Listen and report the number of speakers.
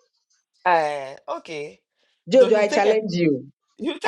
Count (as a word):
two